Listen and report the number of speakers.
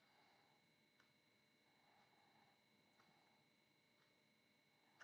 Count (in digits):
0